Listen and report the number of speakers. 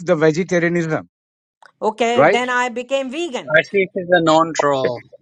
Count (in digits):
3